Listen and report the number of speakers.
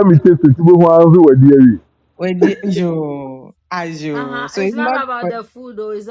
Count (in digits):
3